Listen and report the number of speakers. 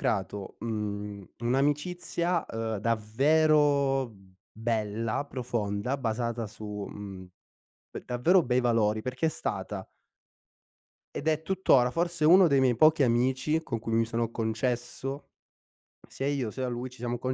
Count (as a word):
one